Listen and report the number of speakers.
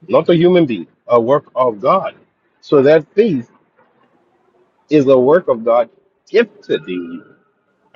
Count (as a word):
one